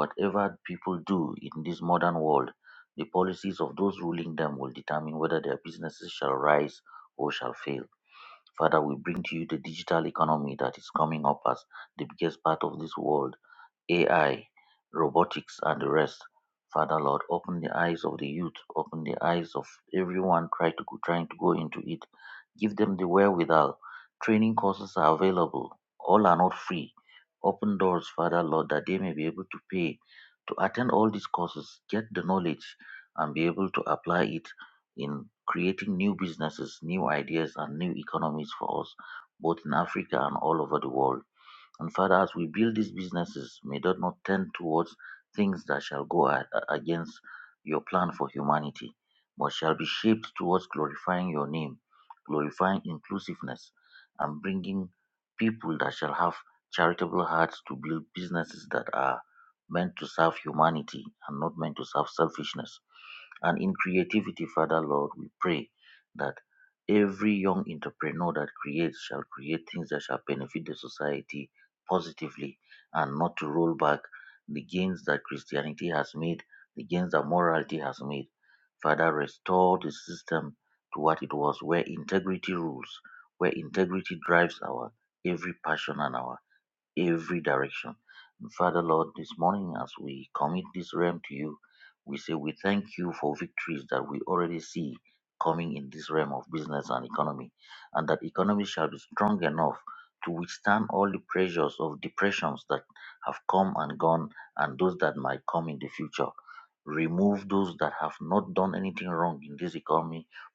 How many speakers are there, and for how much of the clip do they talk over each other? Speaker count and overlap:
1, no overlap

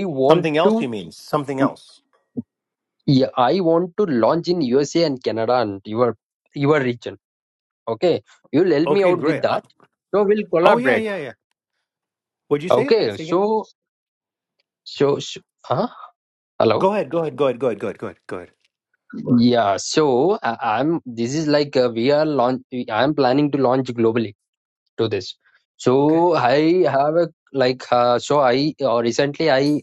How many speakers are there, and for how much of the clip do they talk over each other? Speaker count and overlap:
2, about 9%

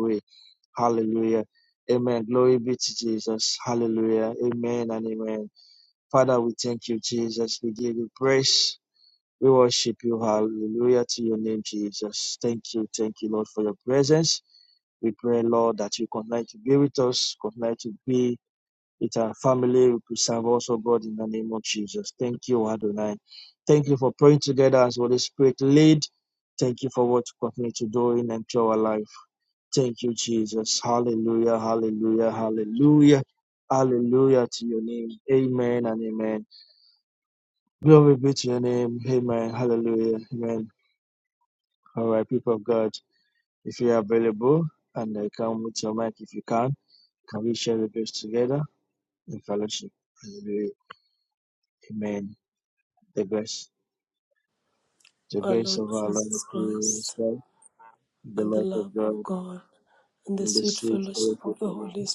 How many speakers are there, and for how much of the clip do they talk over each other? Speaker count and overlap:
2, about 7%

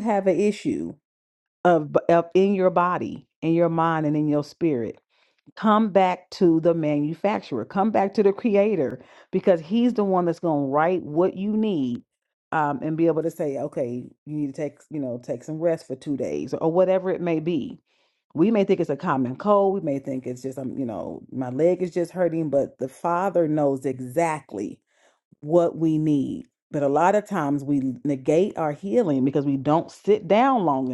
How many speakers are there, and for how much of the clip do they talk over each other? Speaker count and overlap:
1, no overlap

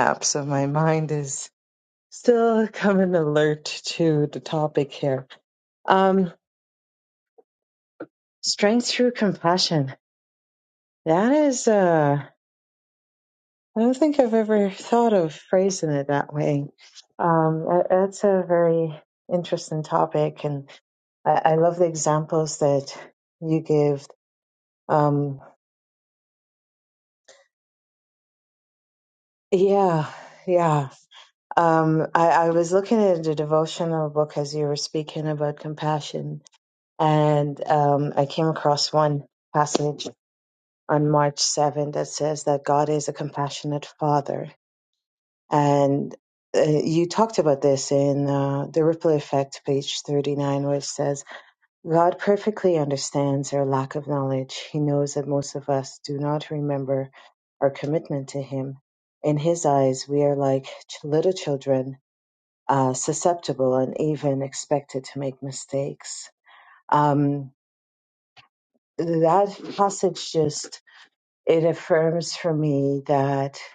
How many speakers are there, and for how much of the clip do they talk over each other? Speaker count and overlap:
1, no overlap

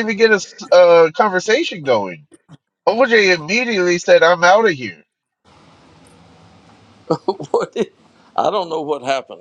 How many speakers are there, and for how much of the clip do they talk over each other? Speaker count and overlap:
2, no overlap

